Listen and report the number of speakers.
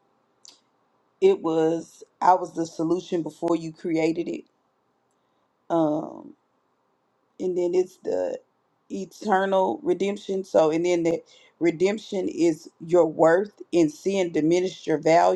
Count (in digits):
1